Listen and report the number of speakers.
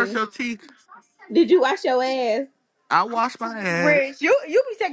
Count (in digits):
3